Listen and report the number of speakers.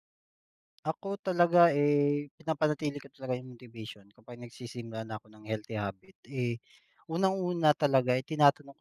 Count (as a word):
one